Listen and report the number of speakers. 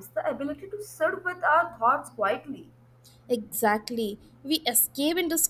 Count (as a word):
two